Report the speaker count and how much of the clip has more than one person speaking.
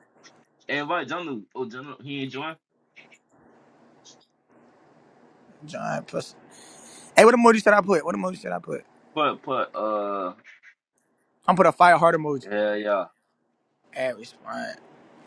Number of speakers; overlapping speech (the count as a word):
two, no overlap